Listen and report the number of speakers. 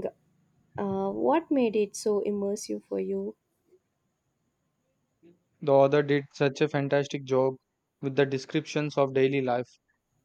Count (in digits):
2